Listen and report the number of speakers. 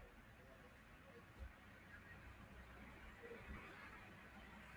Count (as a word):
zero